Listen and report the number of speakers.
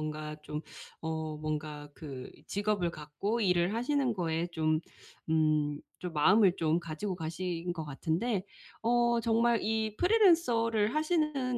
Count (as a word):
one